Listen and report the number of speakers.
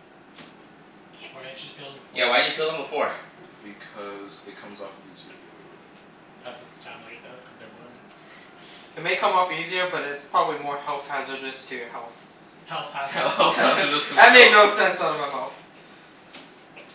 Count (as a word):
four